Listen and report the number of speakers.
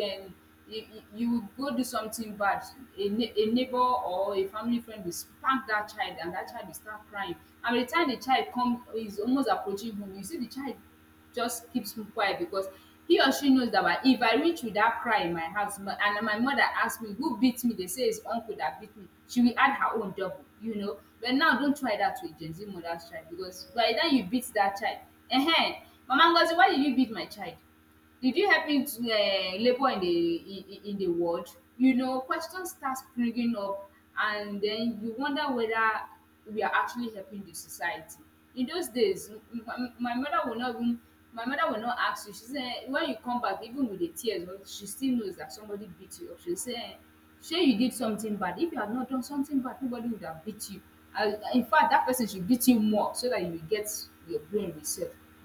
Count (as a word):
one